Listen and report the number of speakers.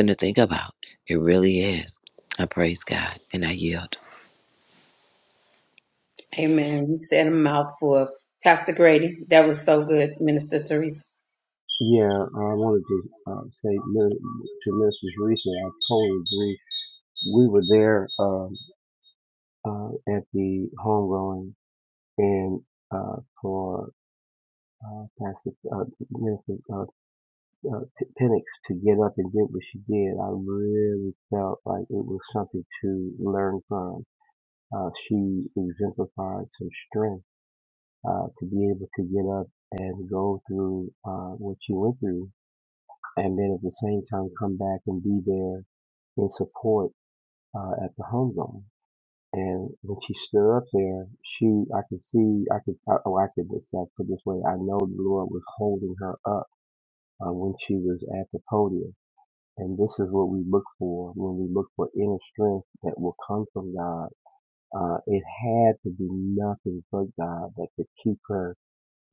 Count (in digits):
3